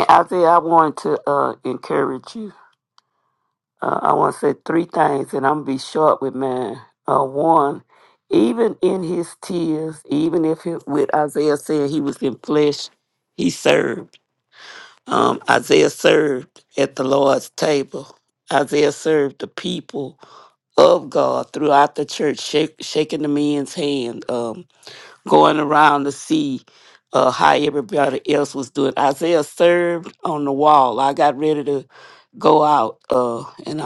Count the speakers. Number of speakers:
one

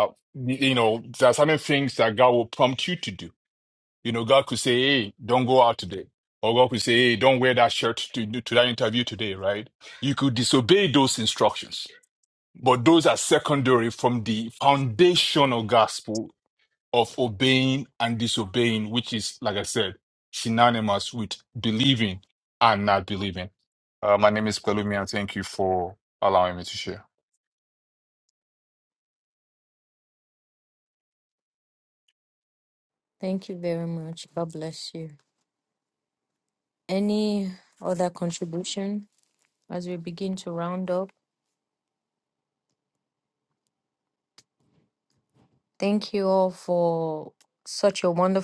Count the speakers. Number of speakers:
two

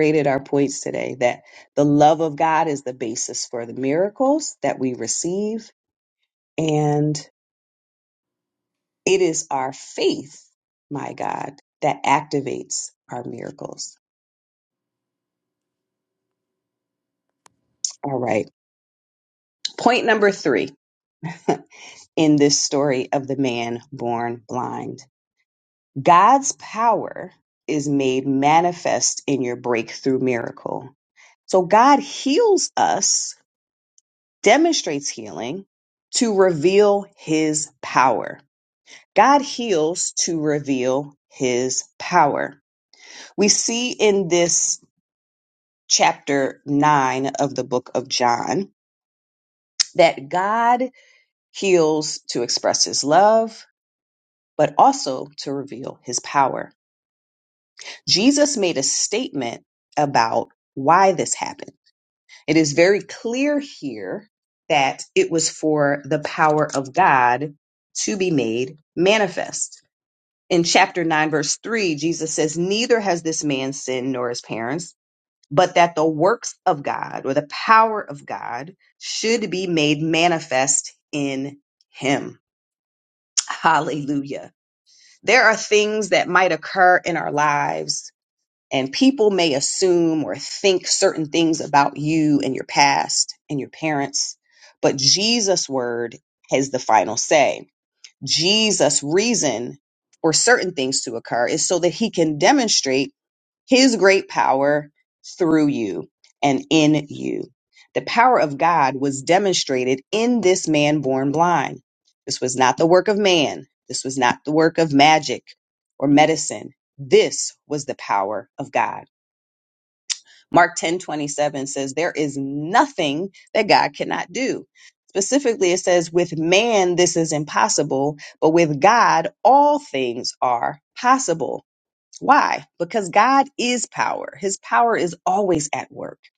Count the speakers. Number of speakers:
one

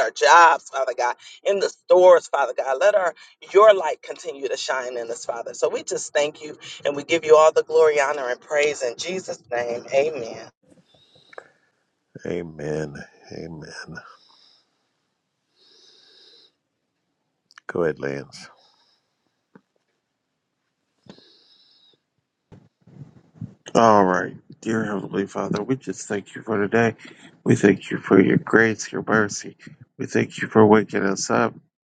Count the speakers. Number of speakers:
three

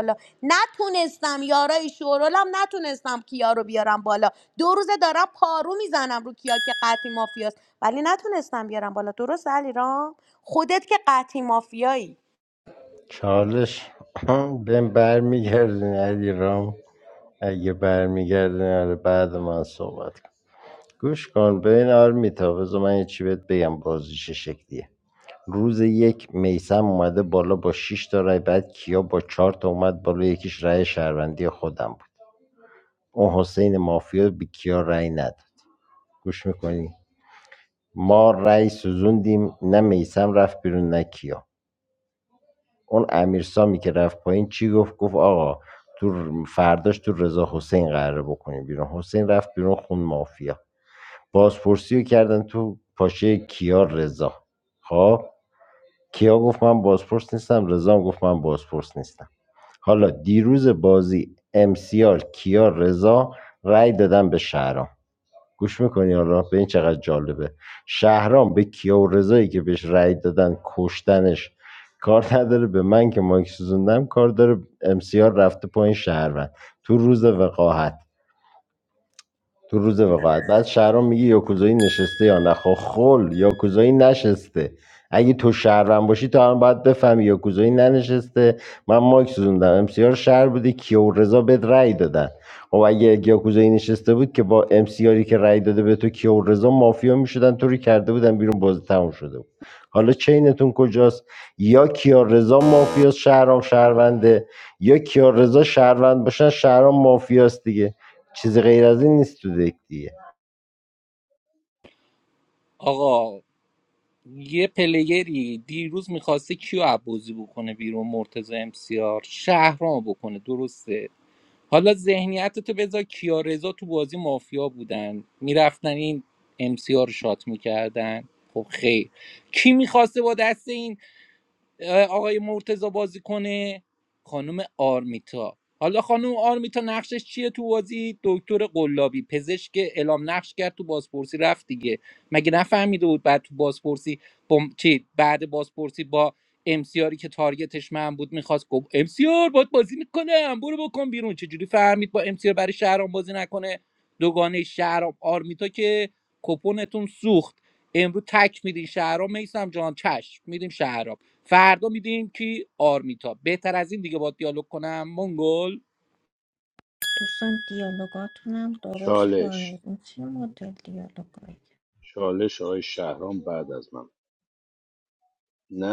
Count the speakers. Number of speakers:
five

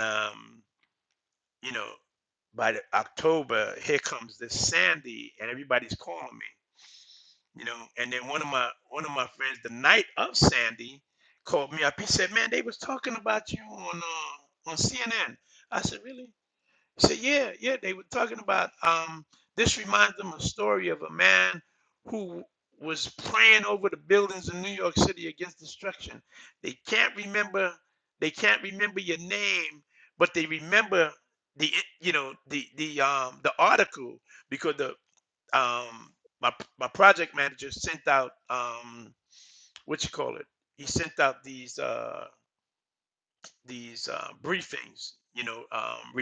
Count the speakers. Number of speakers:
one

